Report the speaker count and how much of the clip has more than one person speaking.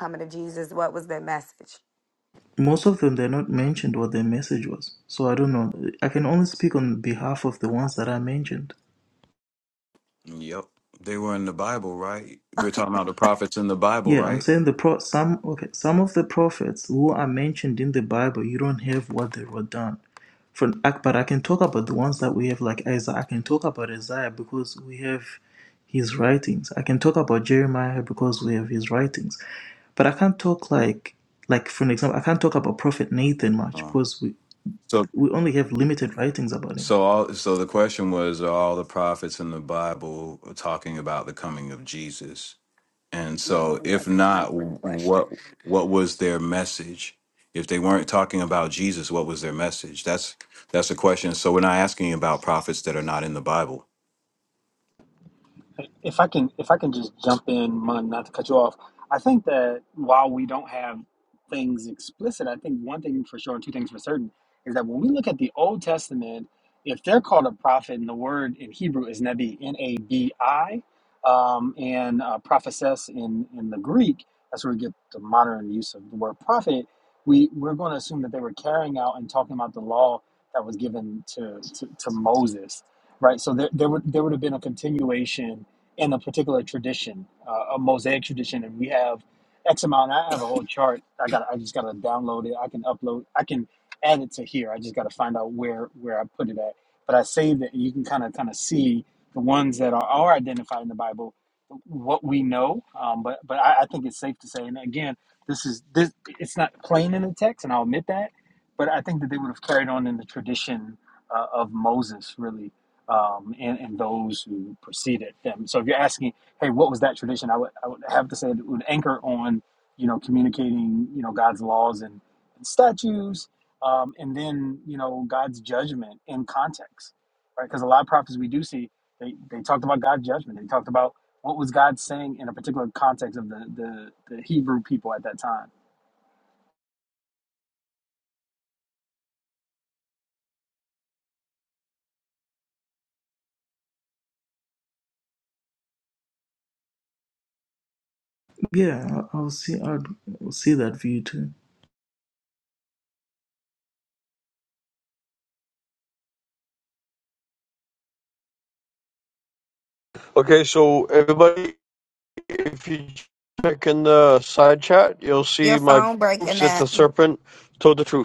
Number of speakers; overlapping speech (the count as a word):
five, about 2%